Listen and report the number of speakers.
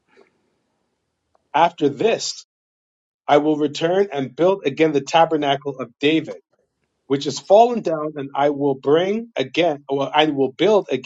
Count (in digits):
1